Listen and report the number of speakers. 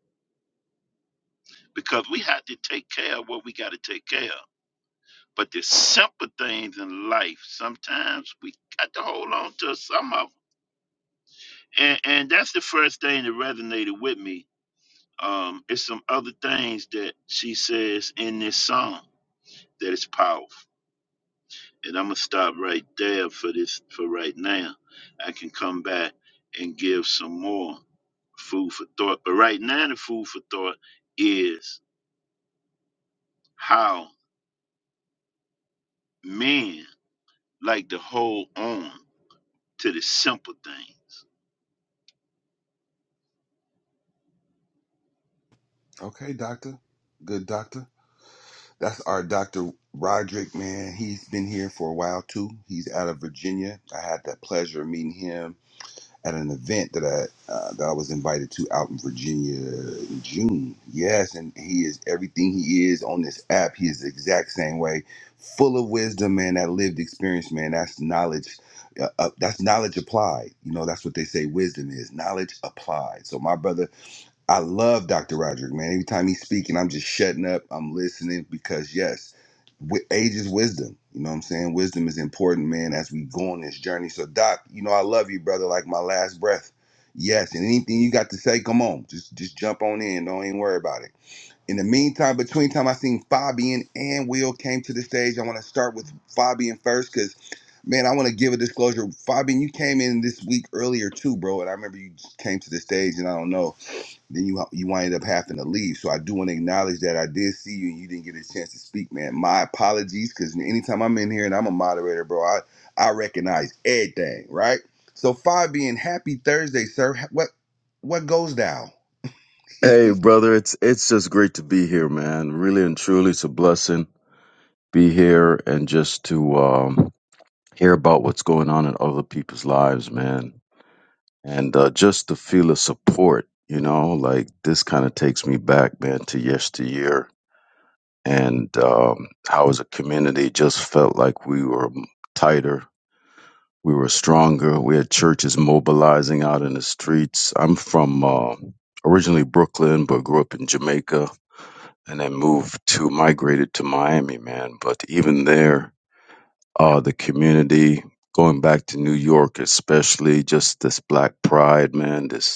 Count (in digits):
3